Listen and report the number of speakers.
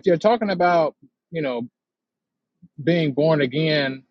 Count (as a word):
one